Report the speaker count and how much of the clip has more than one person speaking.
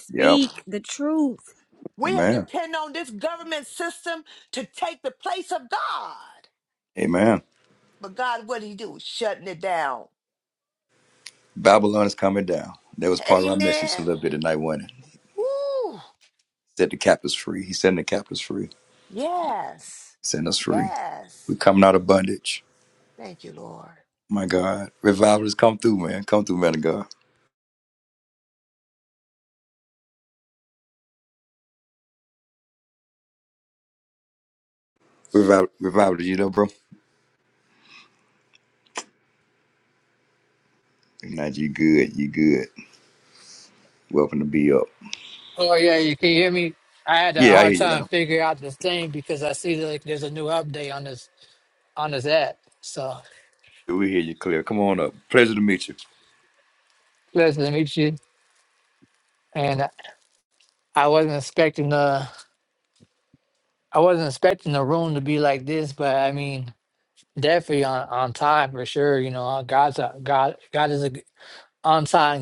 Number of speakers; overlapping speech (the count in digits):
4, about 3%